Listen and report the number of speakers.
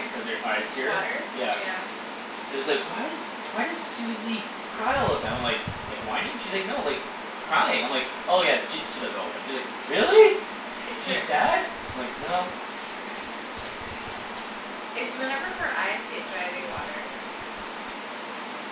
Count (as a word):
two